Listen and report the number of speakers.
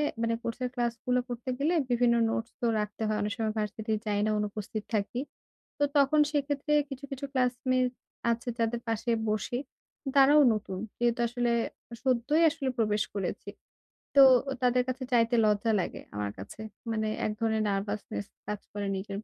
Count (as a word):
one